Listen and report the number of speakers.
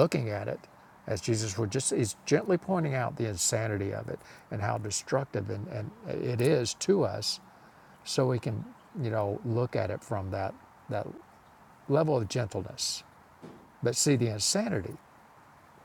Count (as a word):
one